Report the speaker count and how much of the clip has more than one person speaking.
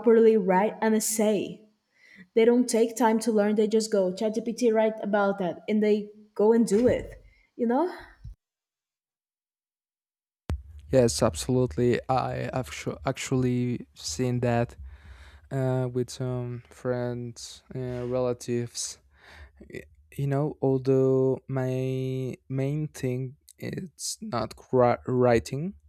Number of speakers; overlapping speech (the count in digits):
2, no overlap